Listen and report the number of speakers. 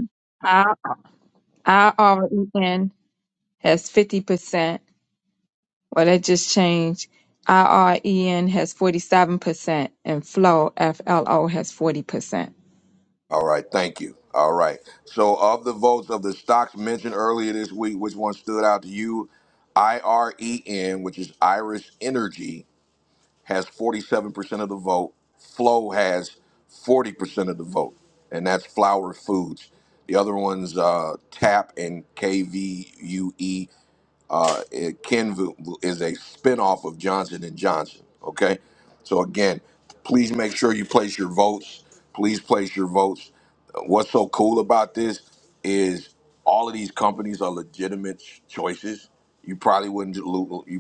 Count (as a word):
two